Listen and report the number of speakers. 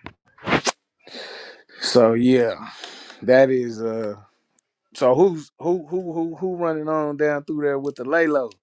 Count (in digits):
1